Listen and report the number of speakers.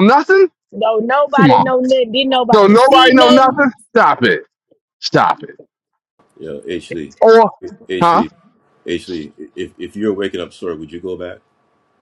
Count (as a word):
three